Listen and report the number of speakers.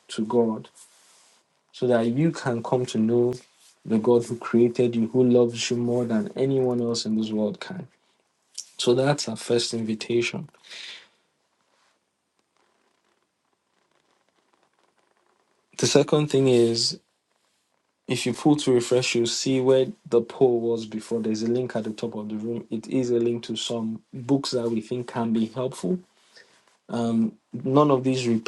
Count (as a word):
one